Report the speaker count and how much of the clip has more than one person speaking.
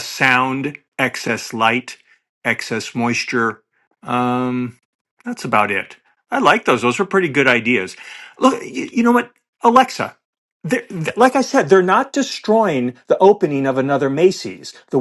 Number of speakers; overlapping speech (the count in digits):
1, no overlap